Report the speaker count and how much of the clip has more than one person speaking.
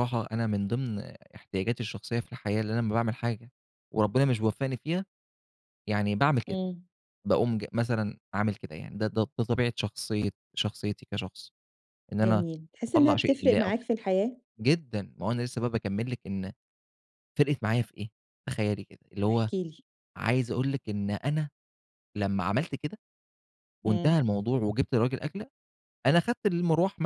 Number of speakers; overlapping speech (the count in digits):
2, about 6%